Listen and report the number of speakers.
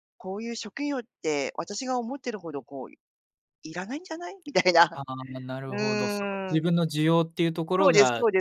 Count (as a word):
two